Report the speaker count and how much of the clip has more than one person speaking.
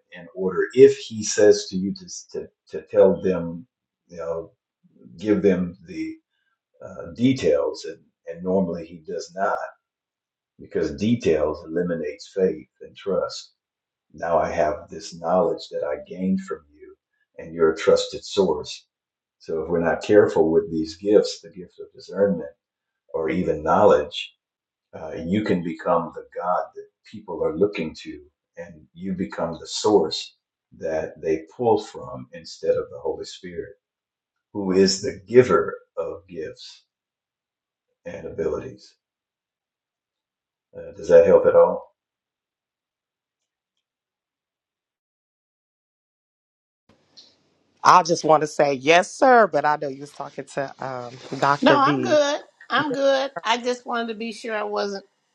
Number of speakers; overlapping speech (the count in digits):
3, about 1%